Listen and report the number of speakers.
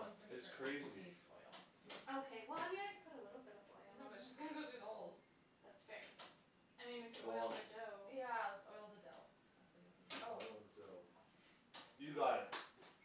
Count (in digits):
3